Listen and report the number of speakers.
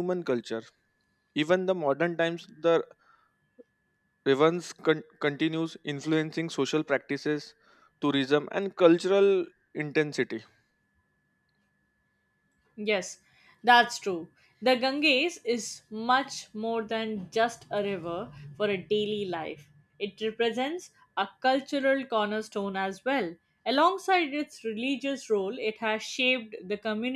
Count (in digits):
2